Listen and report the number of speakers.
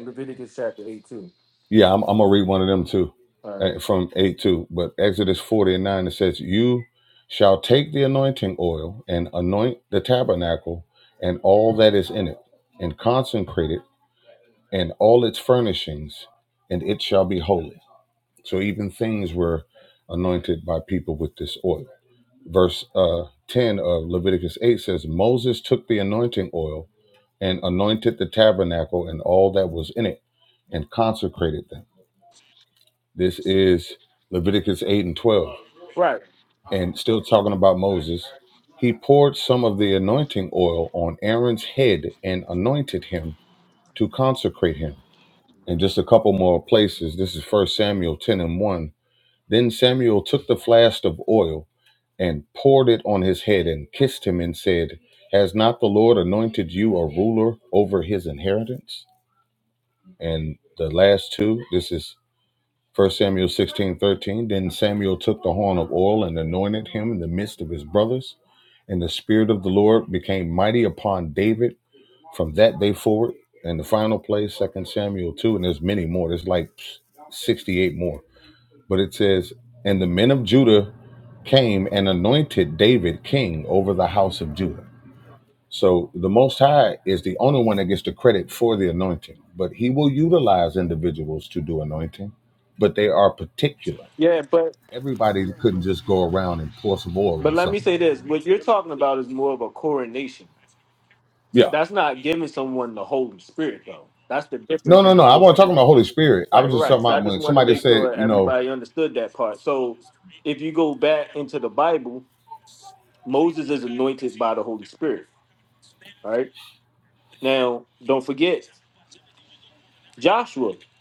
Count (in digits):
2